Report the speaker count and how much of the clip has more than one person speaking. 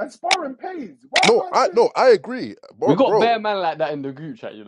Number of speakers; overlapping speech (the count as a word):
three, about 23%